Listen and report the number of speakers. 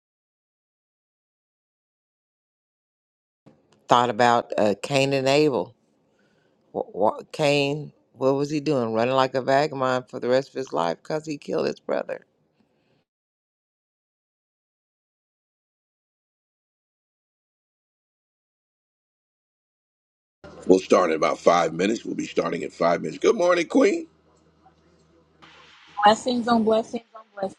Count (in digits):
3